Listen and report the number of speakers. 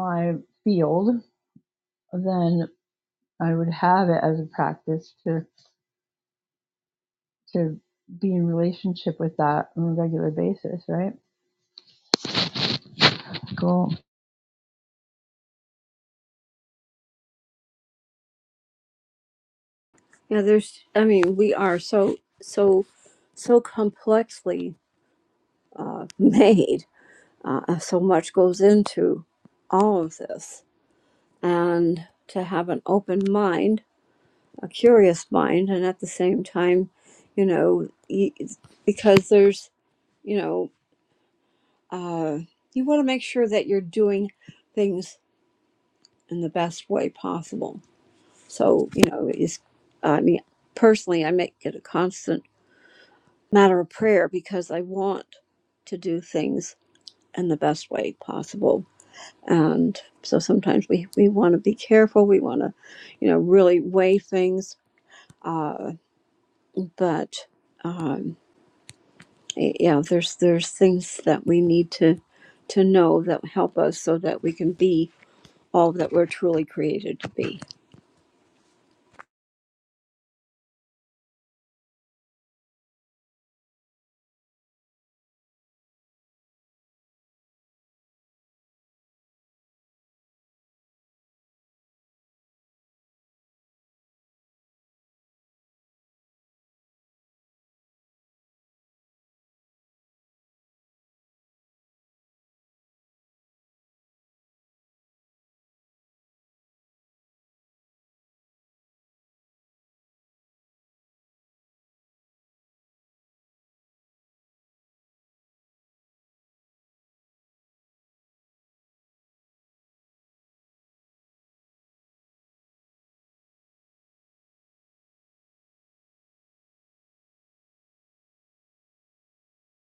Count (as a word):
two